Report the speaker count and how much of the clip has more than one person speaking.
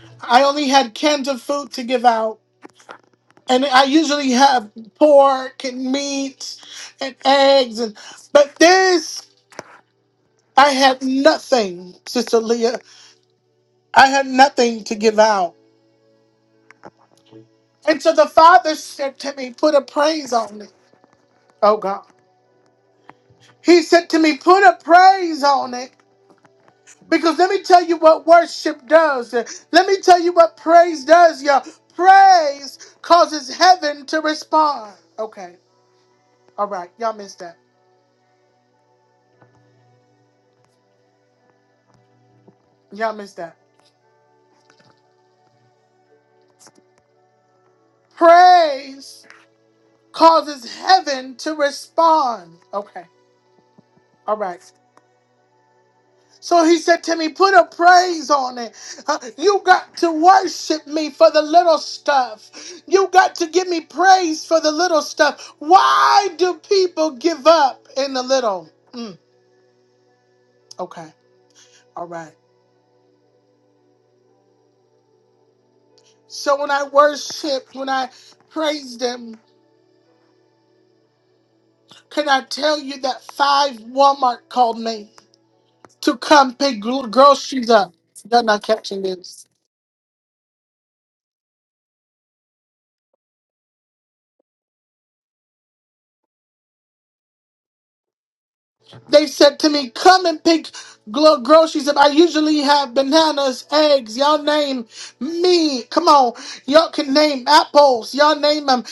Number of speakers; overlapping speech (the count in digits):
1, no overlap